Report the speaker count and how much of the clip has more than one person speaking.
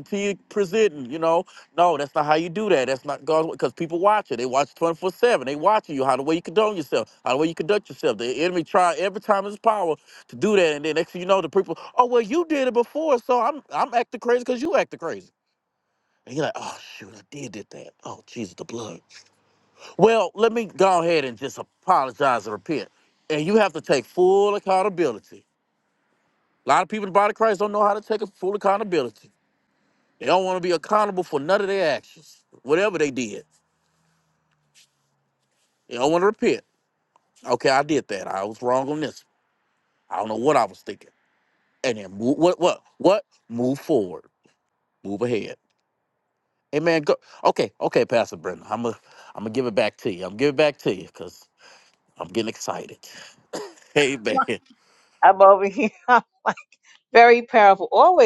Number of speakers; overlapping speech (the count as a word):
two, no overlap